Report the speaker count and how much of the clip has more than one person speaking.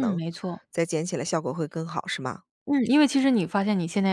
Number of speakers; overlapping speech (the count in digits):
2, about 5%